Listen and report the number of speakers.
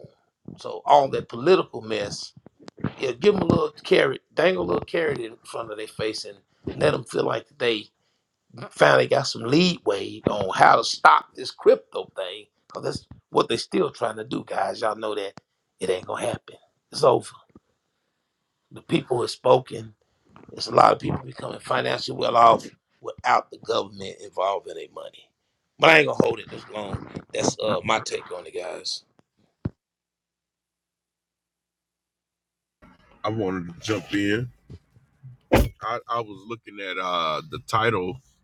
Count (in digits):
2